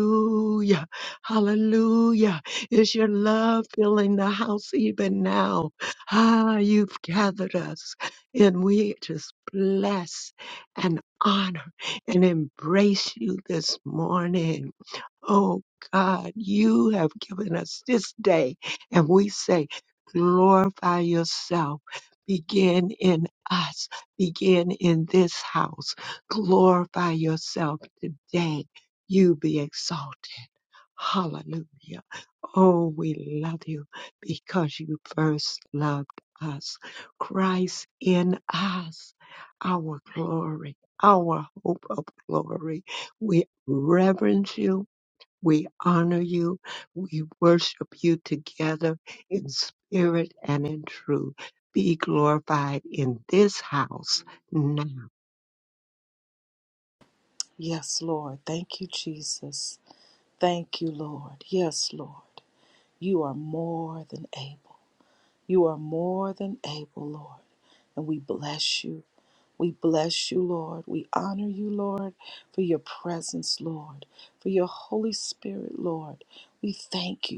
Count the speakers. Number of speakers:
two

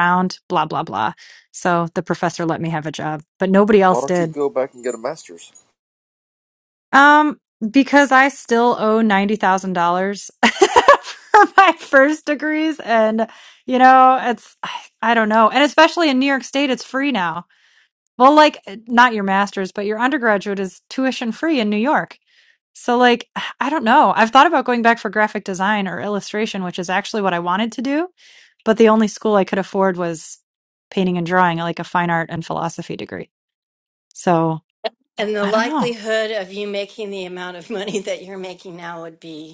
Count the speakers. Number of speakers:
three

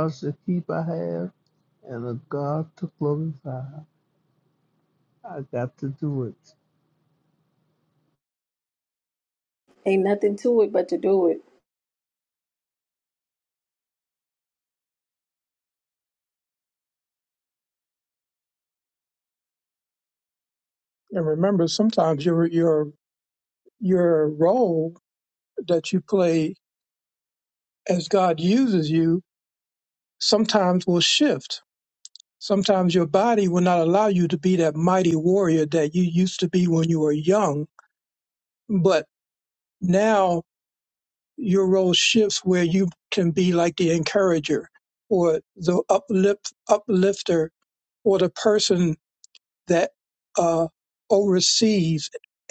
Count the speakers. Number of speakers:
three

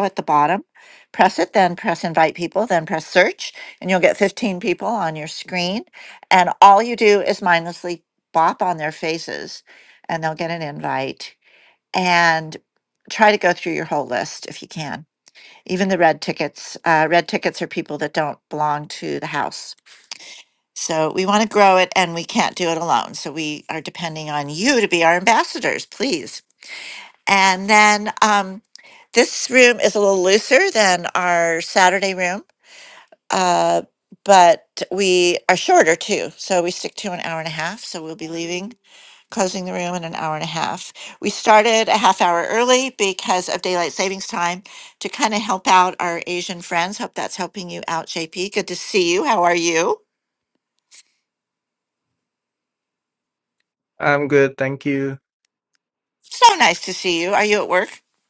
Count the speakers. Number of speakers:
two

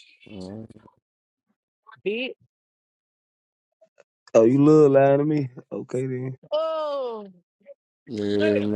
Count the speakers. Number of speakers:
three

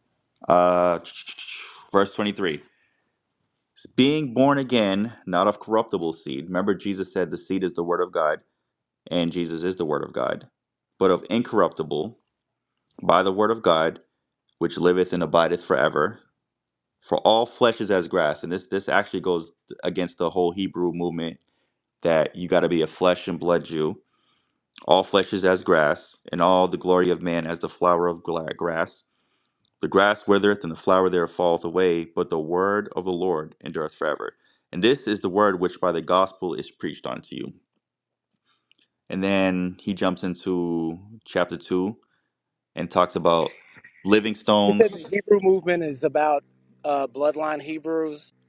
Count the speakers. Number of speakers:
two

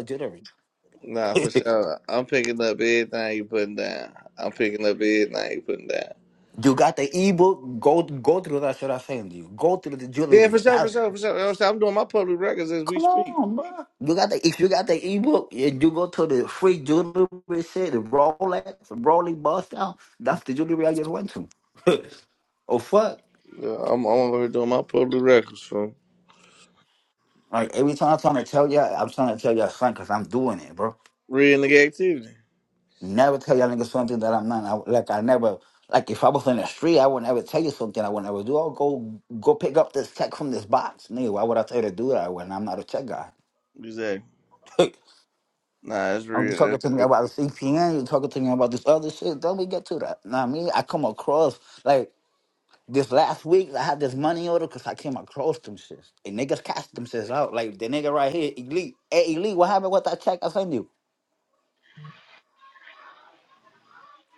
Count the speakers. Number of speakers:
two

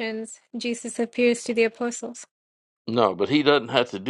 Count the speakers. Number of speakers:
two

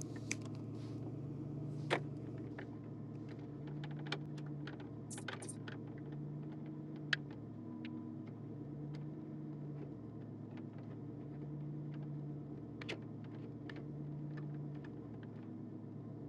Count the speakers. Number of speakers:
zero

